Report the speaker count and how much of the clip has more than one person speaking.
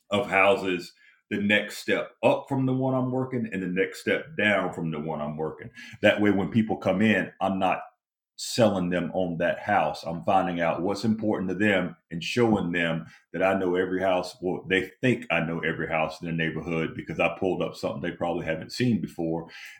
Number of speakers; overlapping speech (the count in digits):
1, no overlap